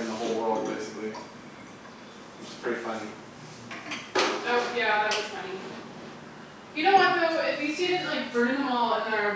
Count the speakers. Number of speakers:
2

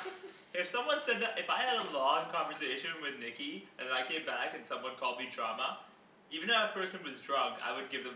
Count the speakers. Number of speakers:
1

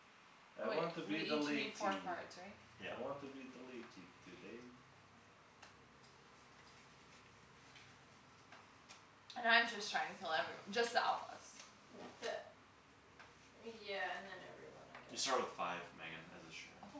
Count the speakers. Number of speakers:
4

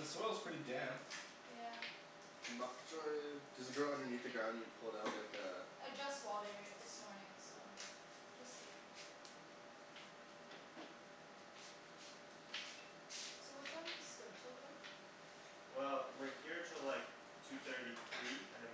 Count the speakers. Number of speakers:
4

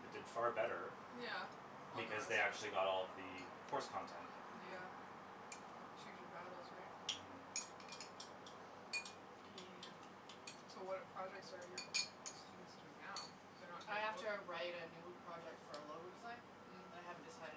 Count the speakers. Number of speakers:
3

